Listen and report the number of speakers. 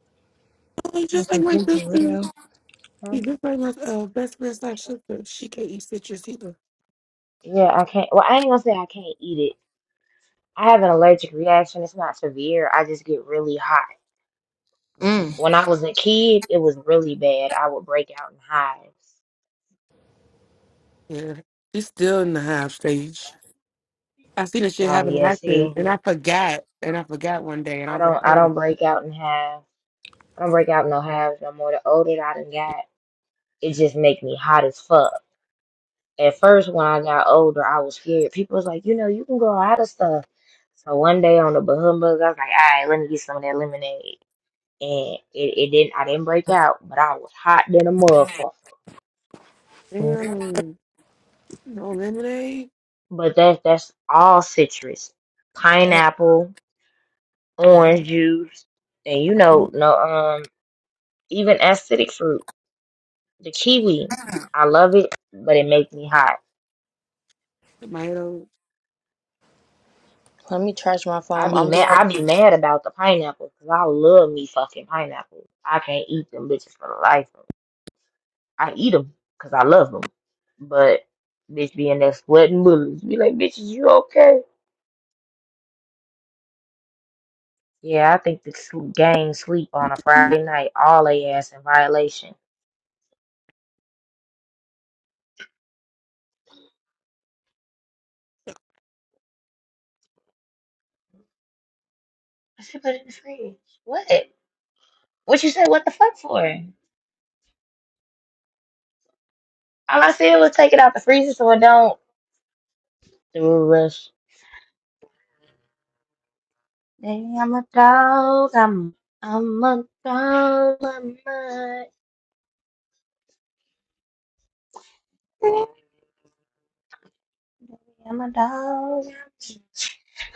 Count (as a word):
three